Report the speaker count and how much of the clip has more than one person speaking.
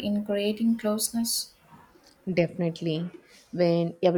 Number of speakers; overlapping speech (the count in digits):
2, no overlap